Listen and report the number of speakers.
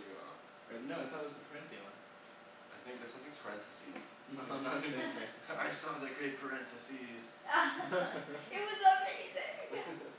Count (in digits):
3